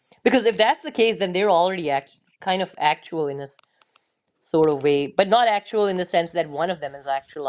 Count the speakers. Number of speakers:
1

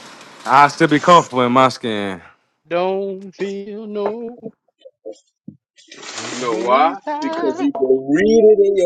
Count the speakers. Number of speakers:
3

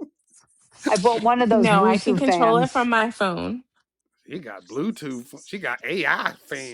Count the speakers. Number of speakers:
3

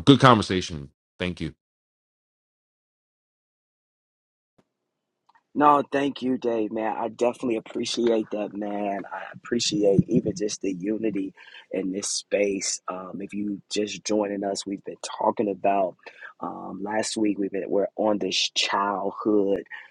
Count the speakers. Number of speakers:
2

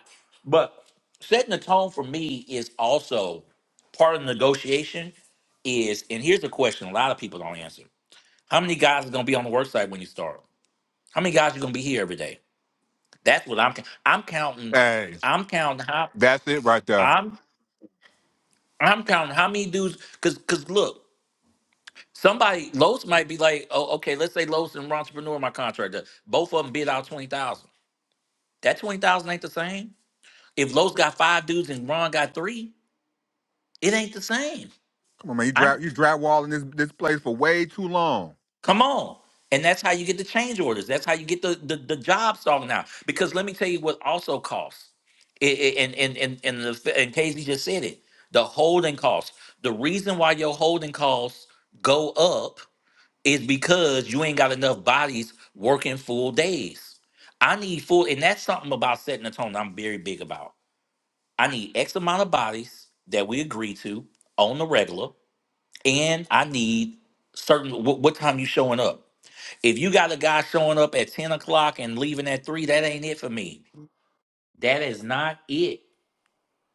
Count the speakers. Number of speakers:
2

